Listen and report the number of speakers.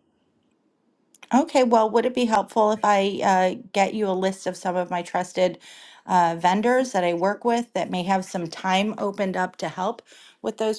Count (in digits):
1